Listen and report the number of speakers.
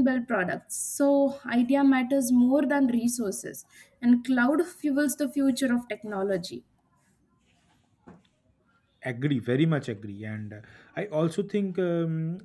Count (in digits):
2